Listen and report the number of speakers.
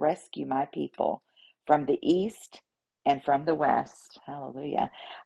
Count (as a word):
one